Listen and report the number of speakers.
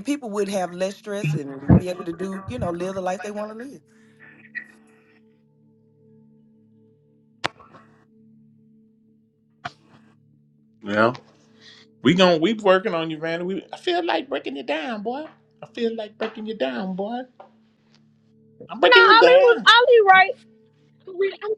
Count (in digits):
3